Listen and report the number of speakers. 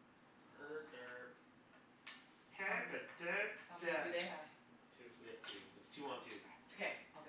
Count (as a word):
three